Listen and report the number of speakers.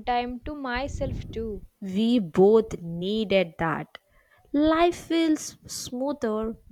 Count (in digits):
2